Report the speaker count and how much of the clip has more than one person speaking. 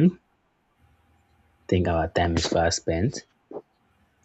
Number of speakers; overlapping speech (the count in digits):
1, no overlap